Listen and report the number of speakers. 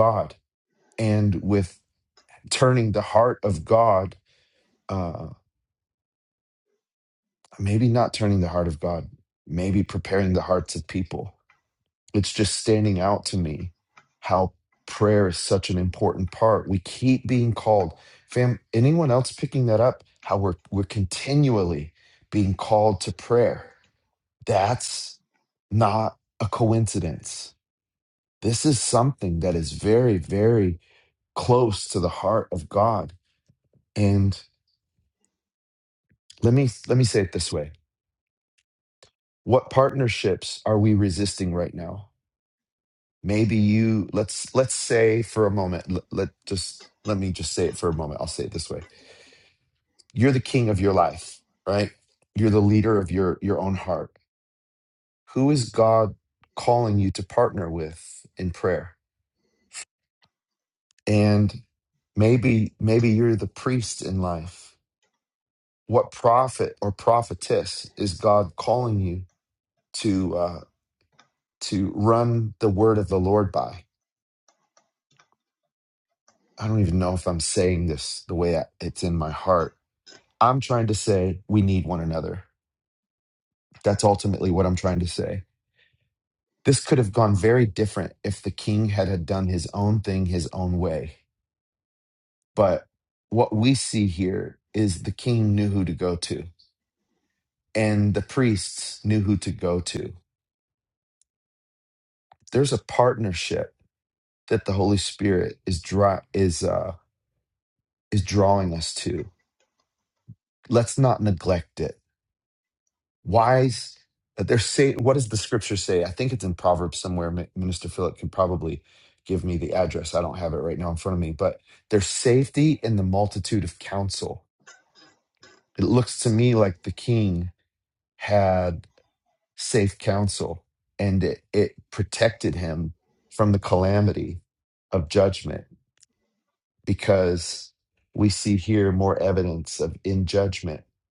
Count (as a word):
one